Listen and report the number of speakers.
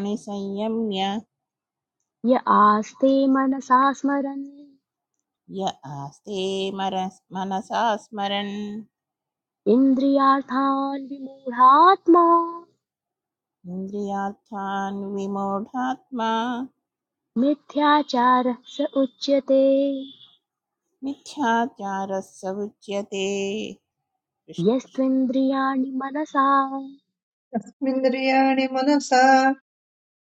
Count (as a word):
three